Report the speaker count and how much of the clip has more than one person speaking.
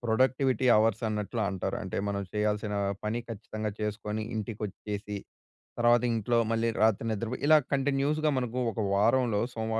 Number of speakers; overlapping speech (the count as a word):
one, no overlap